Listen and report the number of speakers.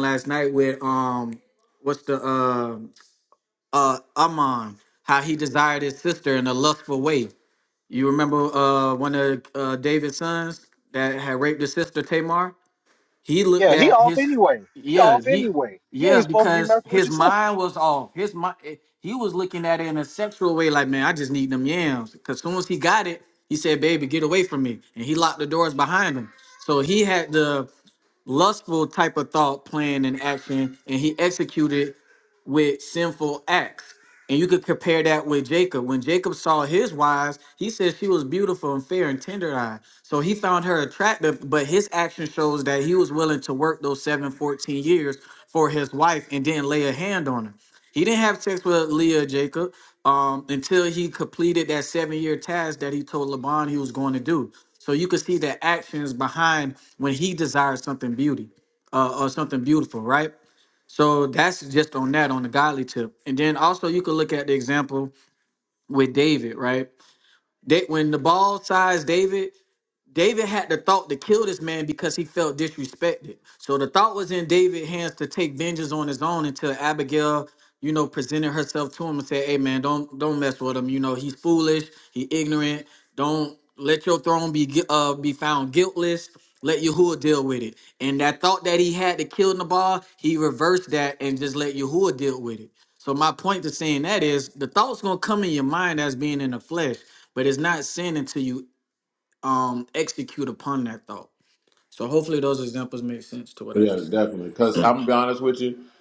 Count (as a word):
three